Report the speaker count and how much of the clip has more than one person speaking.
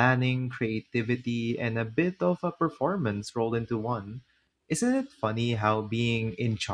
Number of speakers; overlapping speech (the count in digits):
1, no overlap